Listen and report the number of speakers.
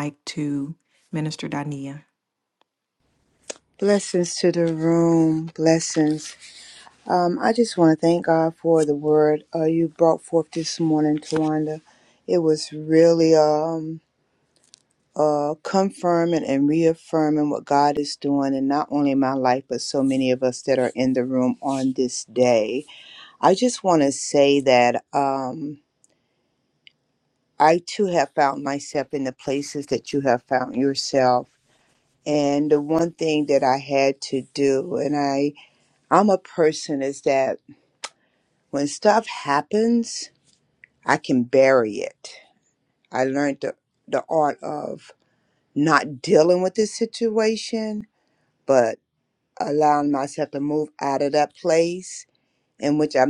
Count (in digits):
2